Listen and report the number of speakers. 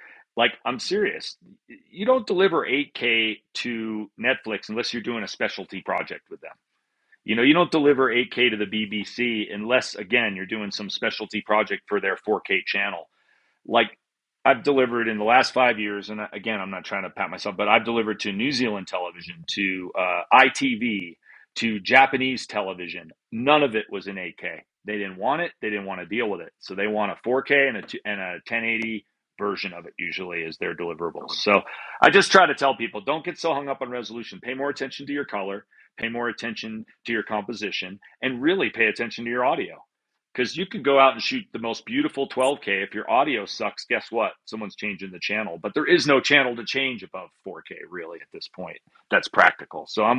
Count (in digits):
1